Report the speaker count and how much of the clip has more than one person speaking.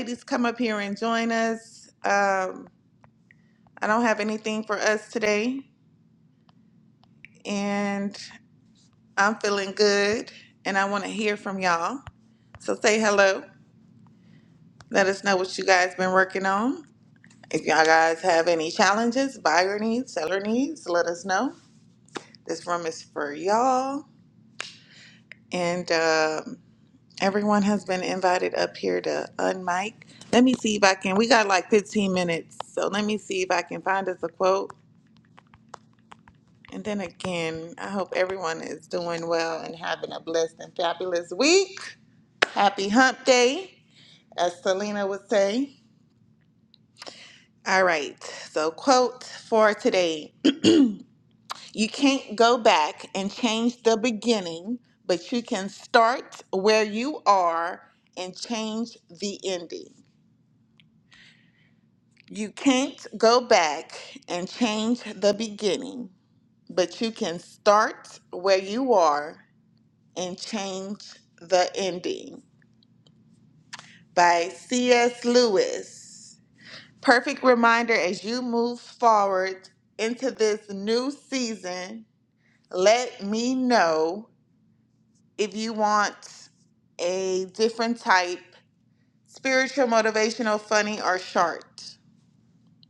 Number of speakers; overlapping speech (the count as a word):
one, no overlap